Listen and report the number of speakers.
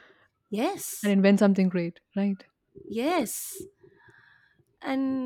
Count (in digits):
2